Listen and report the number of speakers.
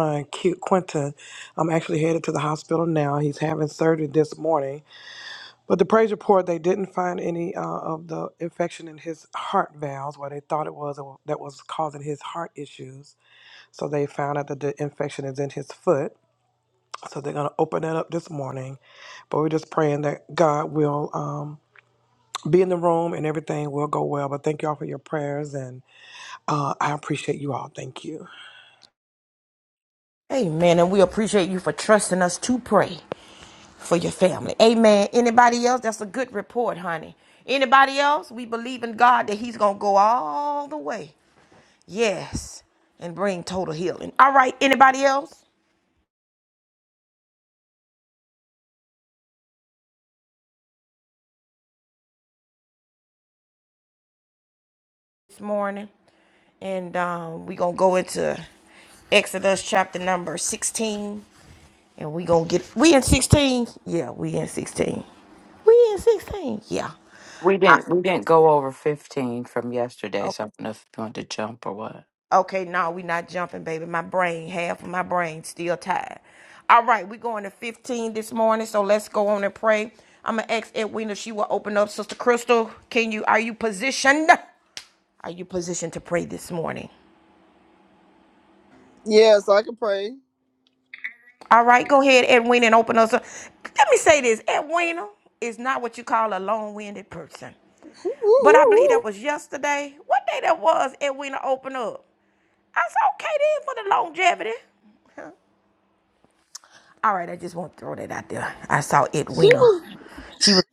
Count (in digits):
4